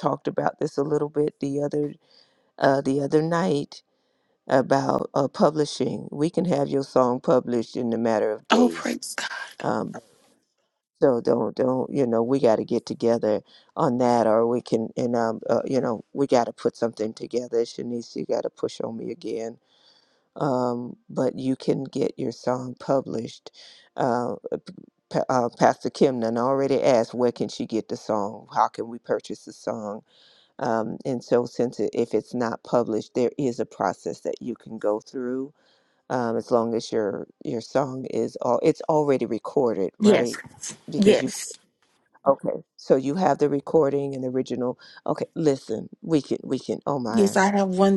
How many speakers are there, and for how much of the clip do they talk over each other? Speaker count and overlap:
2, about 3%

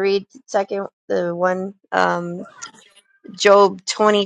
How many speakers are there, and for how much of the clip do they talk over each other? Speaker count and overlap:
1, no overlap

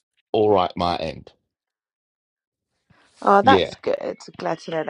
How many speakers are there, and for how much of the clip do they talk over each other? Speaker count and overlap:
2, about 7%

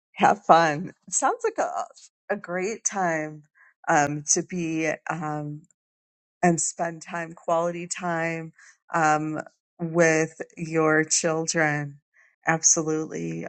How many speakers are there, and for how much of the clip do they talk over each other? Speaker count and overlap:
1, no overlap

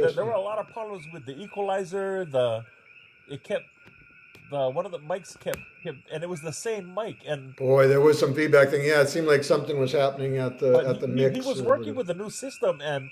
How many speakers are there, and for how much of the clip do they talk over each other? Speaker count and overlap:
2, about 12%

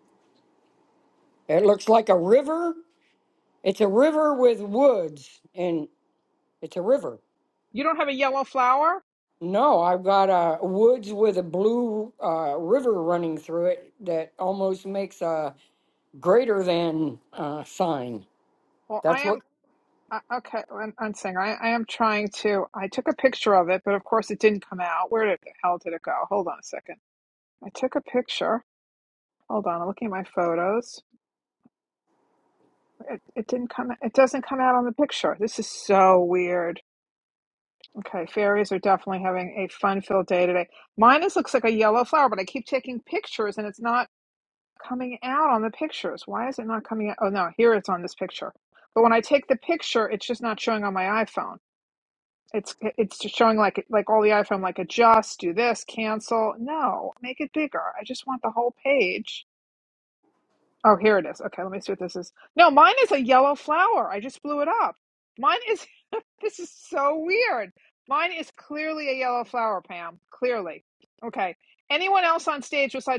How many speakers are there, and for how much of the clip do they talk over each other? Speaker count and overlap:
2, under 1%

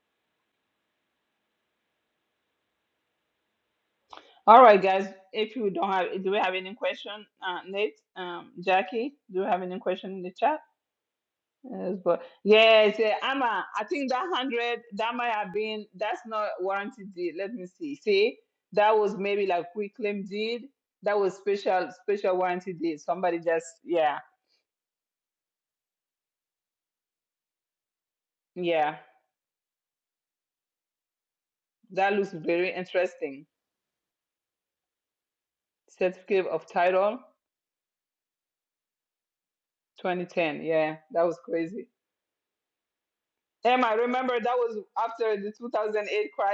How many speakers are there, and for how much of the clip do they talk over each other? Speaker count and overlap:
1, no overlap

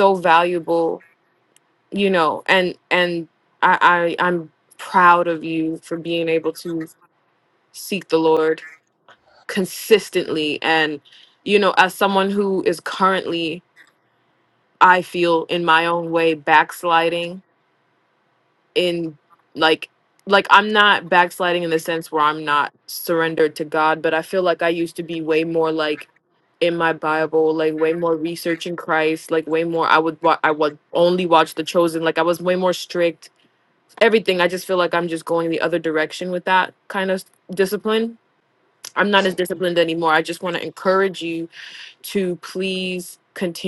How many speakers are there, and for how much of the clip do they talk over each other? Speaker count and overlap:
1, no overlap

